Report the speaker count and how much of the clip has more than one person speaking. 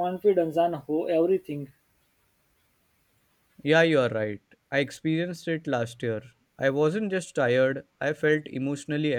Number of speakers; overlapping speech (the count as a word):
two, no overlap